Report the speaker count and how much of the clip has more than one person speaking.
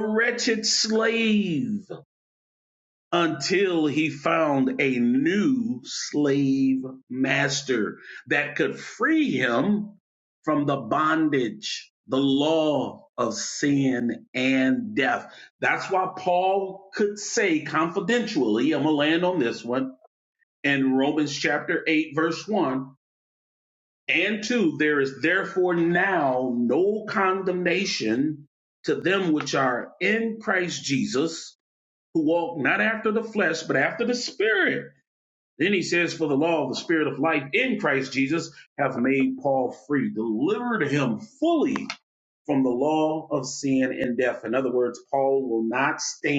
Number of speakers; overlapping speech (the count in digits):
1, no overlap